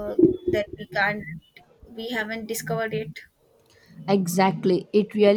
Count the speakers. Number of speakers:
2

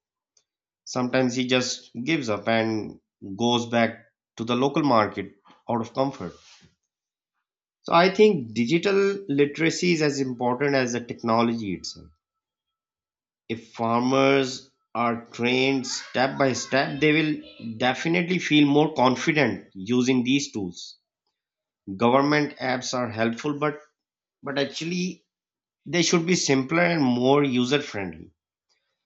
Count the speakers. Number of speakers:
1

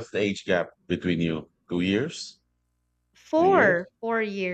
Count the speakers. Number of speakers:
2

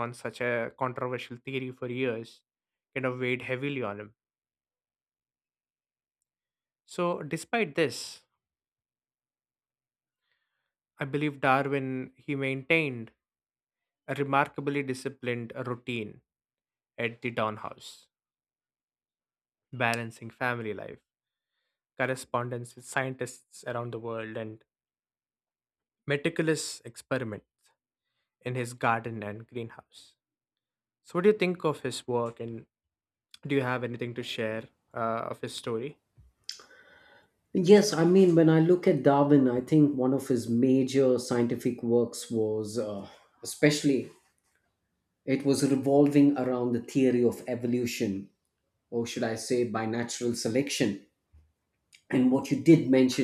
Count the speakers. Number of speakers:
2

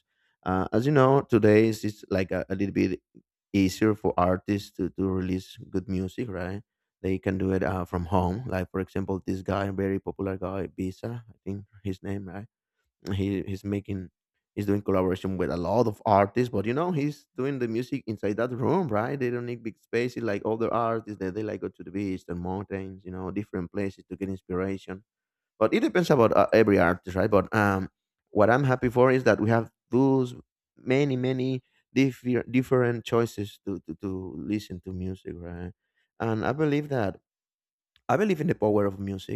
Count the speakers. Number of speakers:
1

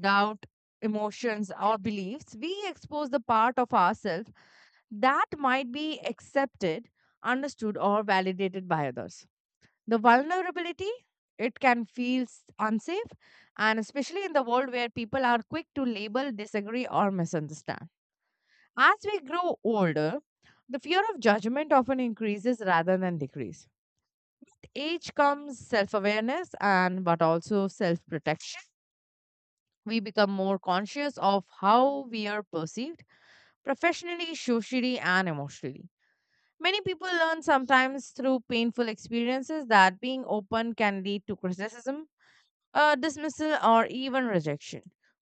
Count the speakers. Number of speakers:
1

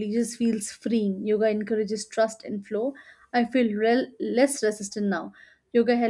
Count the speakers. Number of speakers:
1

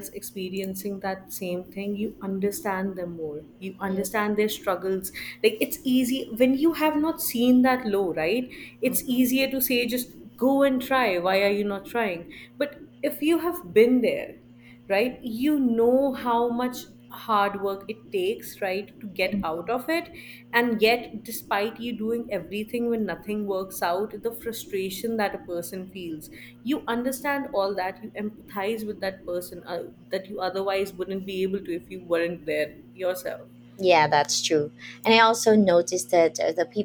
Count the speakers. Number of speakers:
2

